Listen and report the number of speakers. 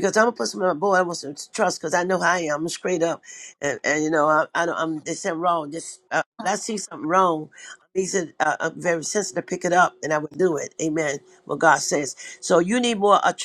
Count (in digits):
1